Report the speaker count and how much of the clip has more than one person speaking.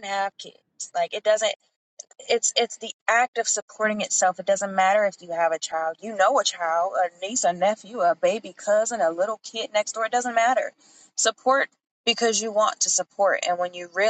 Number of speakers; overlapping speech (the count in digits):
1, no overlap